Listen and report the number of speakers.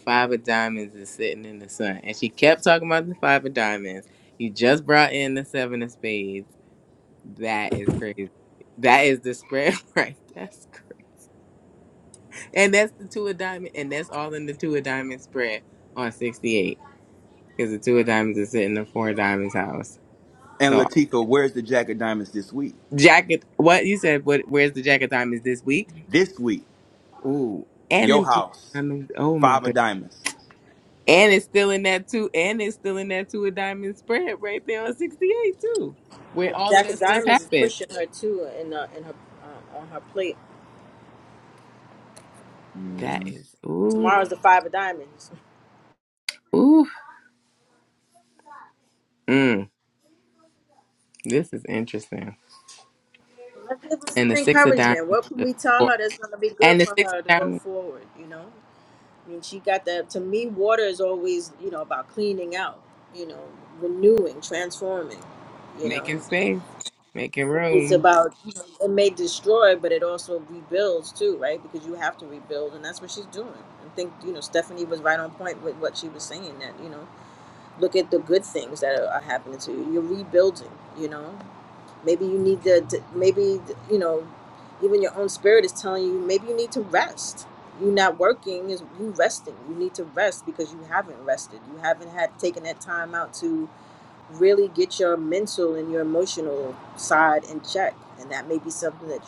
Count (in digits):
3